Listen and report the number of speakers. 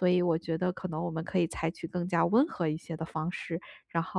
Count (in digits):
1